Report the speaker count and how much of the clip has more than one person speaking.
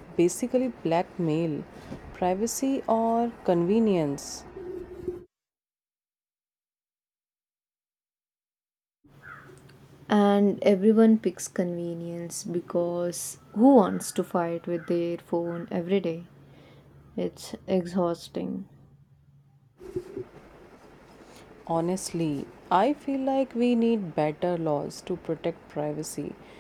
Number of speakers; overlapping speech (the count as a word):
two, no overlap